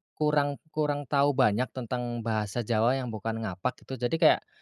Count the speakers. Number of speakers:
one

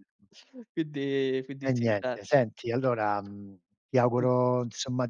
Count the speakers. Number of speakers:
two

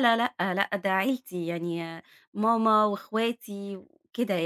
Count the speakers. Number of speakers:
one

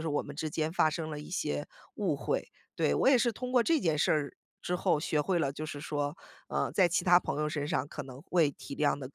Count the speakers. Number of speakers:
one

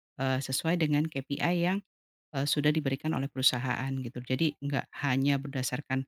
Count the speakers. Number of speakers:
one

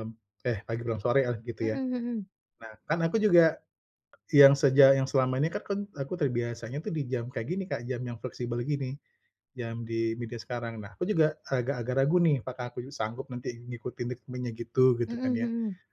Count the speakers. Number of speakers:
two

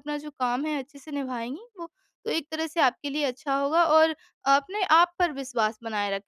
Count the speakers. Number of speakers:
one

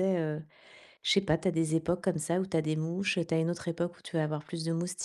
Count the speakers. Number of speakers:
one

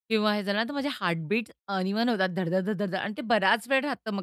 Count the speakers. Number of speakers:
one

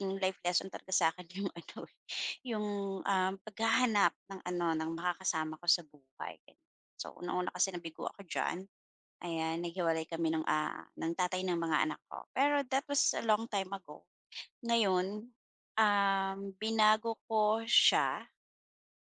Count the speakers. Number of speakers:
one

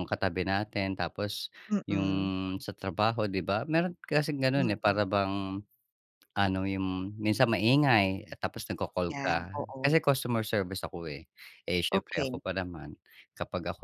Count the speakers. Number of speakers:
two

